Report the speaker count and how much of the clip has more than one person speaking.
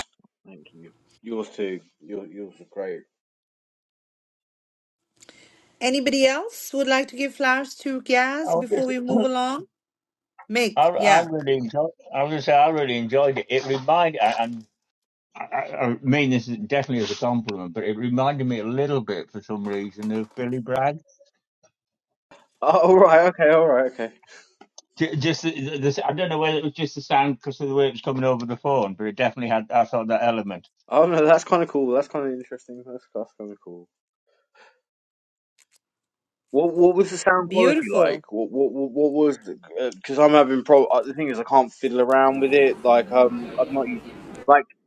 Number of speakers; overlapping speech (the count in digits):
3, about 4%